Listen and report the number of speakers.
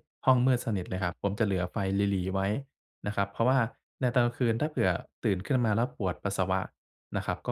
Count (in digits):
1